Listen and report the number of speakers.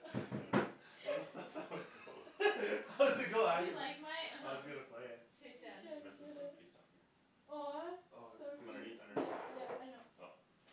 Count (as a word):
four